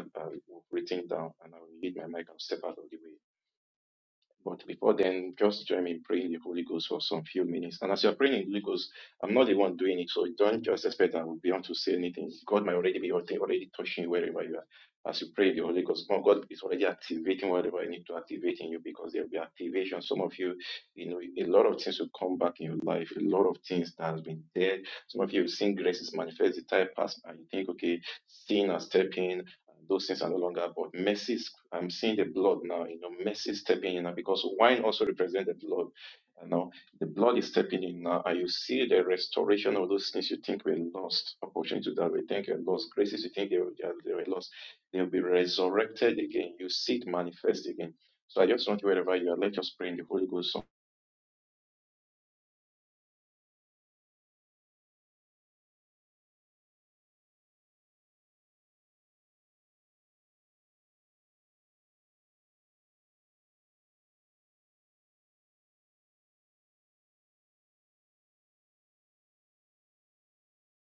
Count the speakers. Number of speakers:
one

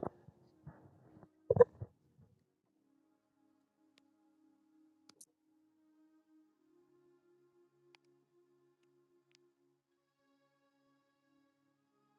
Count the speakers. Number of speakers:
zero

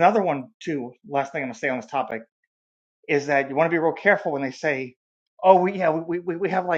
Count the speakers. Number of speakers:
one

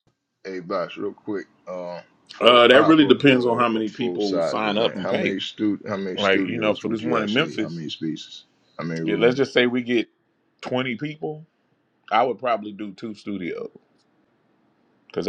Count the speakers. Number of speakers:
two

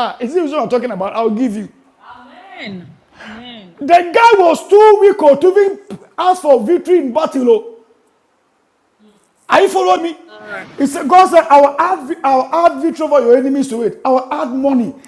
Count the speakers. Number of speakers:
two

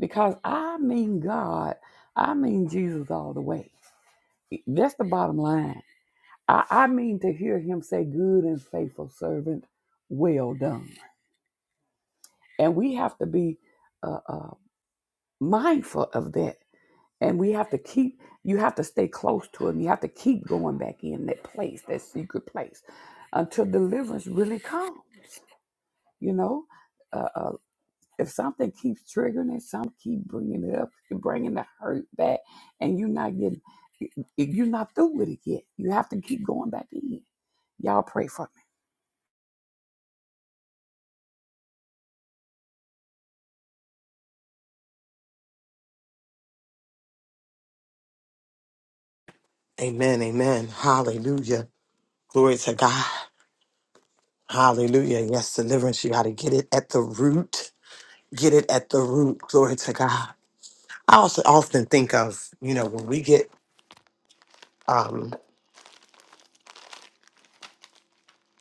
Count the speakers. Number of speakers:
two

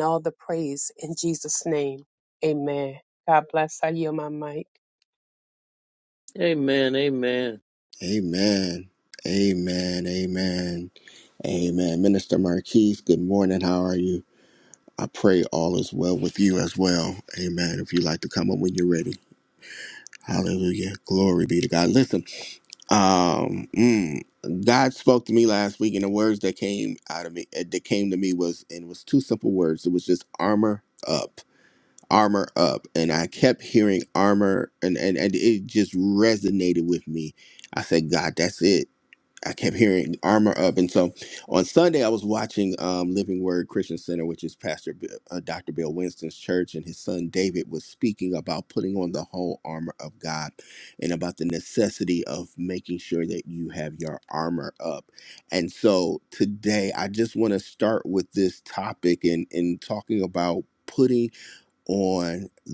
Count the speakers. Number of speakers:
three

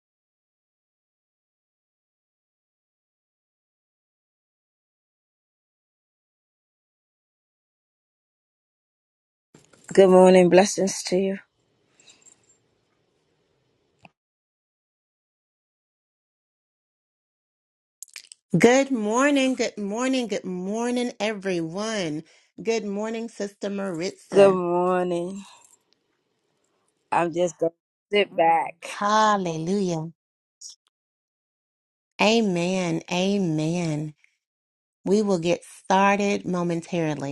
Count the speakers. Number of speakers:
two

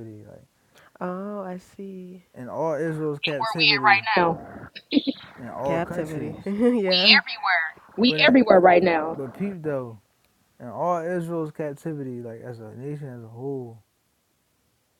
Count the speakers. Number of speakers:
three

